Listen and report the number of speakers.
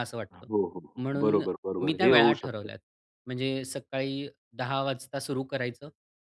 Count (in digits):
2